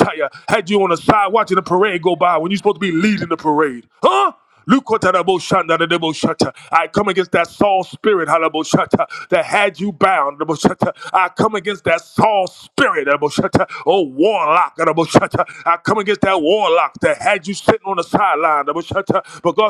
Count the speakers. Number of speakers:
one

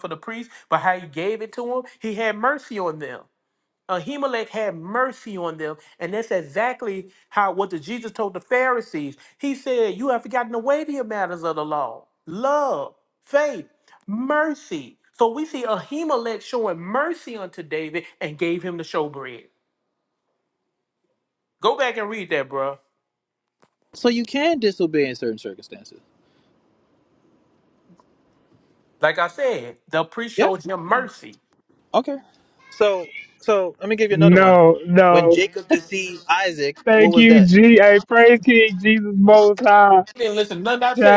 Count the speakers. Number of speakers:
three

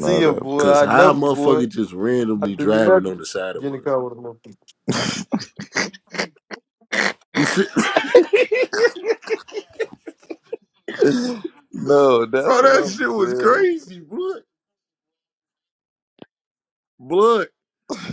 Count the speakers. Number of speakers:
three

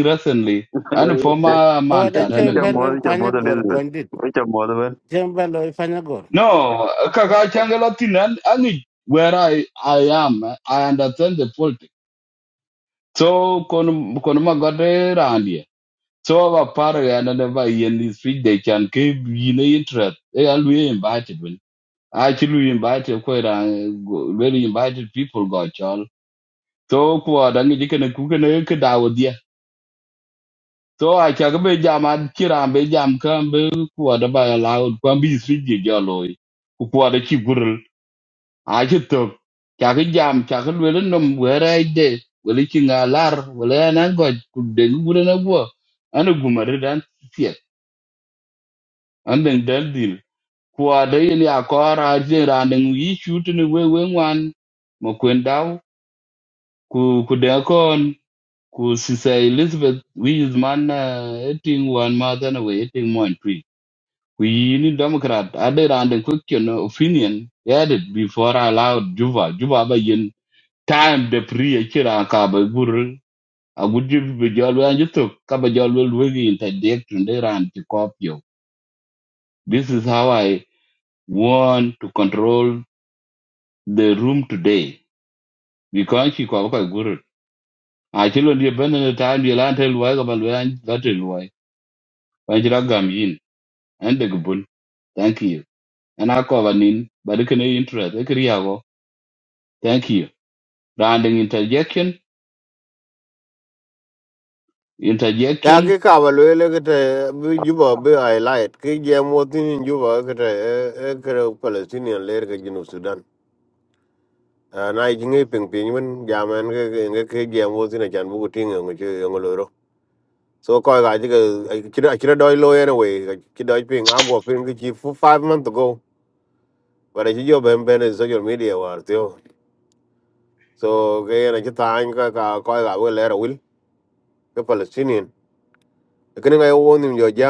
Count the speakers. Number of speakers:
four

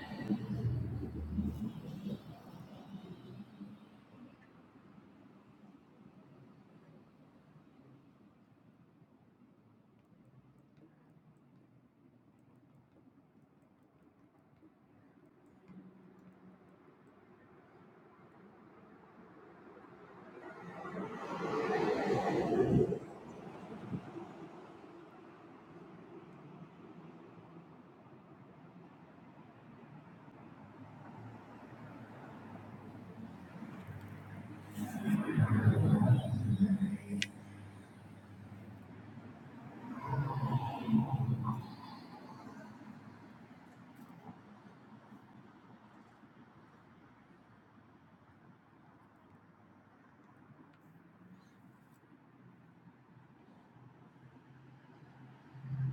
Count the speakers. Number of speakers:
zero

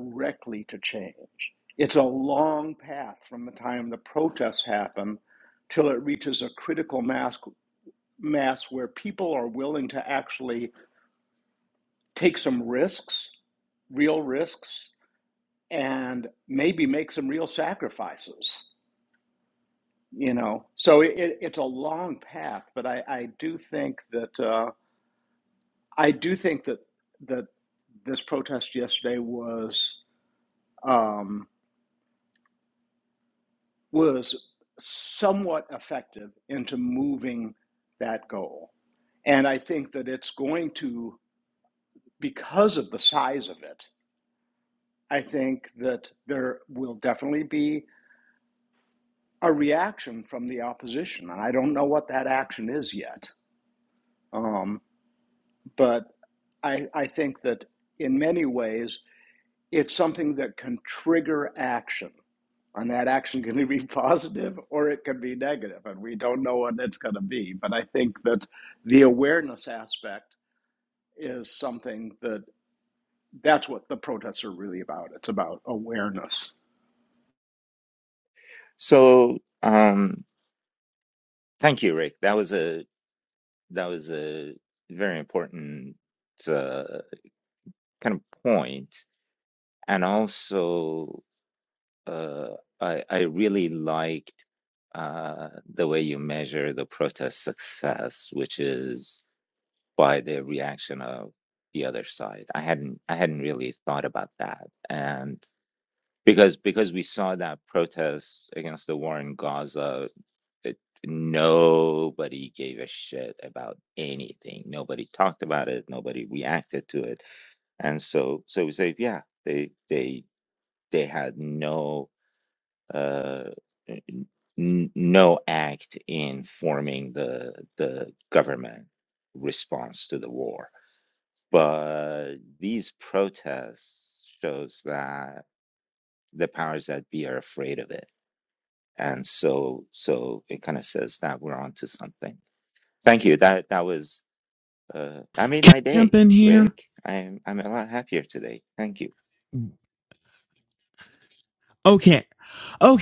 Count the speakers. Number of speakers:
three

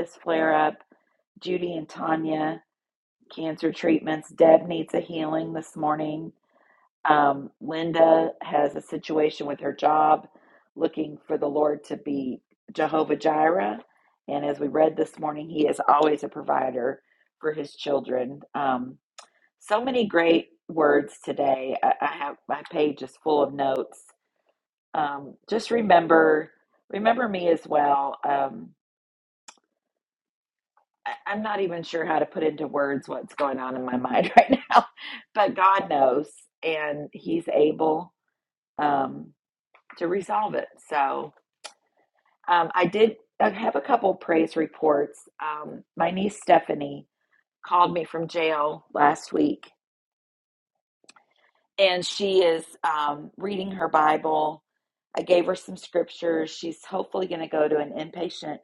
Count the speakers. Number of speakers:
one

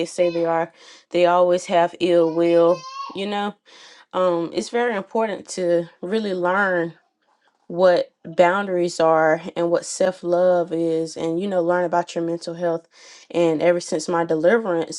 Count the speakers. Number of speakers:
one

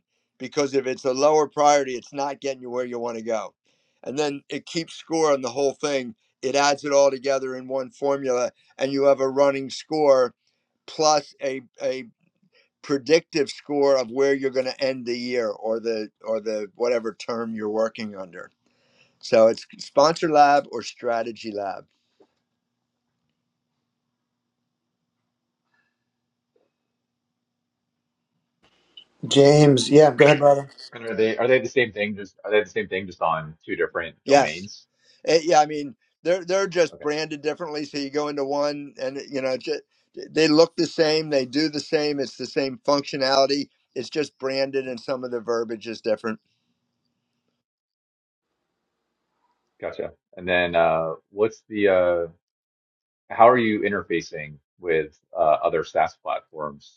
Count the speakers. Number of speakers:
three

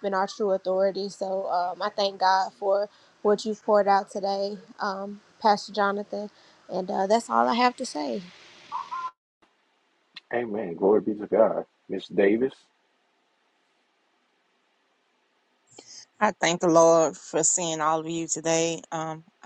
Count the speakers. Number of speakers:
three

